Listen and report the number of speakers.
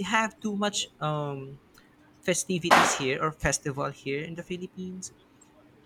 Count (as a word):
one